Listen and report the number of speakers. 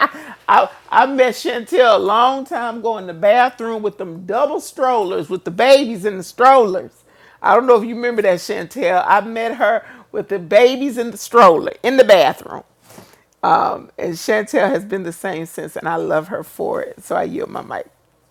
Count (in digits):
1